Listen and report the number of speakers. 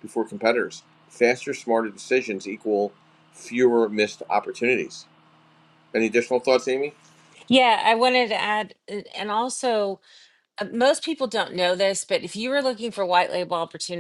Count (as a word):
two